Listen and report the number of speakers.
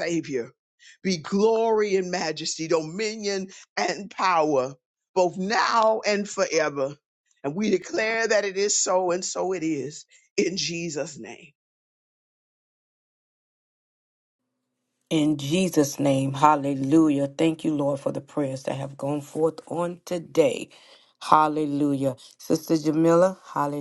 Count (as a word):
two